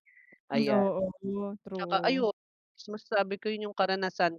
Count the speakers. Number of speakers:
2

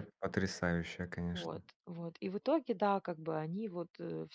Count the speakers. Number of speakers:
2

